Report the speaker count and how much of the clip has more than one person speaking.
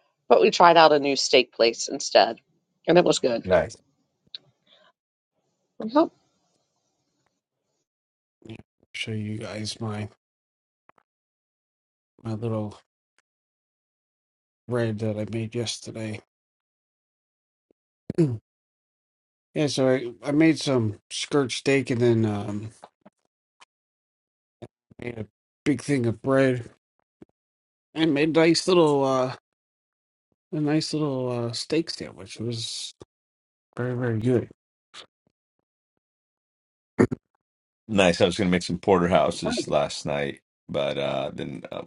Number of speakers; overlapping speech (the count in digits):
3, no overlap